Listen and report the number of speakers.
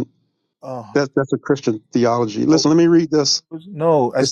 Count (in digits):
2